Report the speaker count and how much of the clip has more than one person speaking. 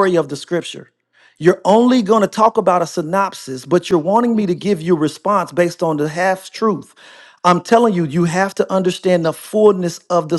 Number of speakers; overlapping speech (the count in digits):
1, no overlap